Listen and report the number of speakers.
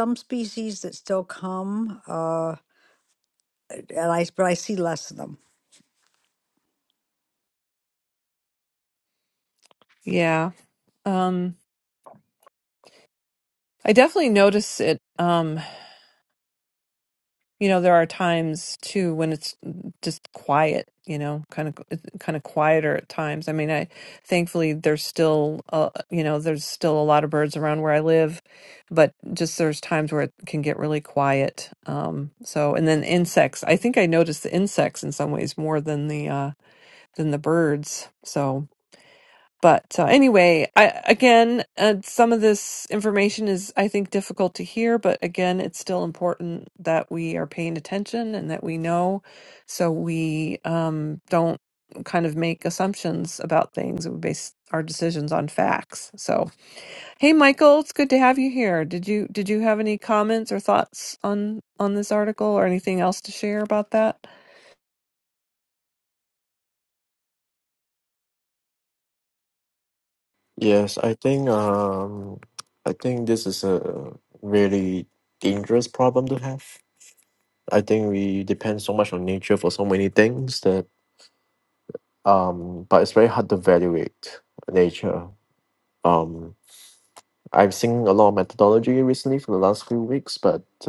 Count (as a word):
three